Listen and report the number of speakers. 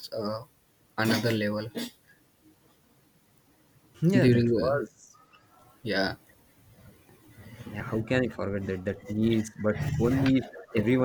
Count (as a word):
two